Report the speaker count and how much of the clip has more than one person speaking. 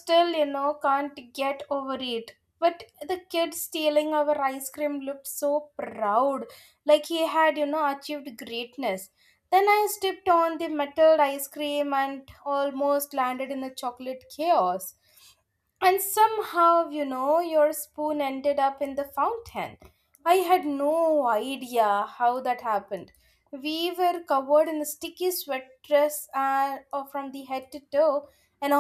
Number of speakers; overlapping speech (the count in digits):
1, no overlap